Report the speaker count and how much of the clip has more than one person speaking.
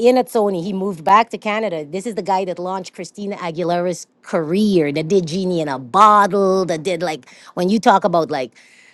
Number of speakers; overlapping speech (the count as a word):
one, no overlap